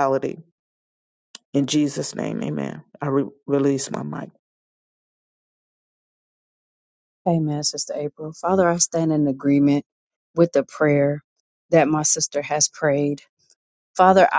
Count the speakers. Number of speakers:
2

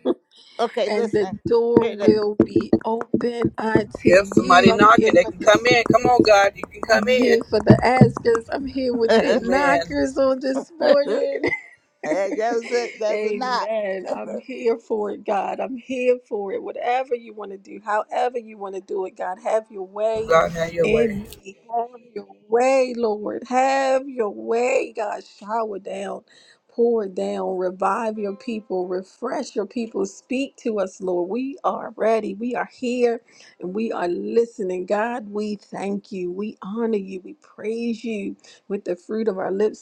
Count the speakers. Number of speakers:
3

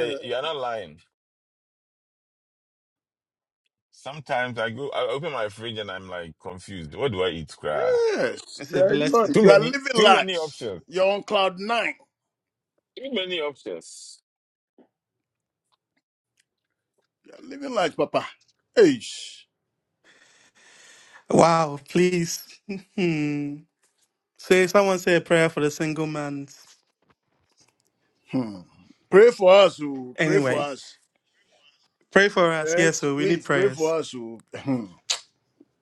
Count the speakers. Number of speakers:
3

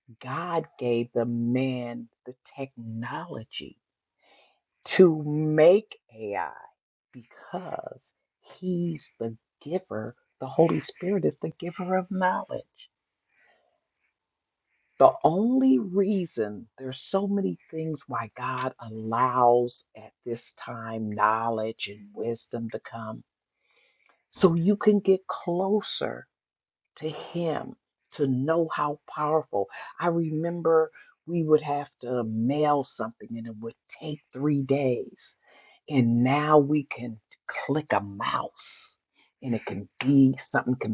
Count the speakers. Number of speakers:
1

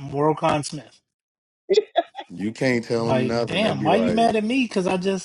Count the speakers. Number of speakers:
2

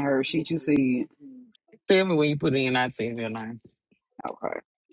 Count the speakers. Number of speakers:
2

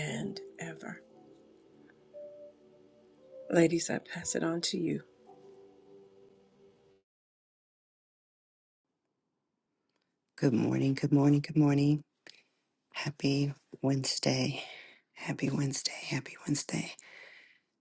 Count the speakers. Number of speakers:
2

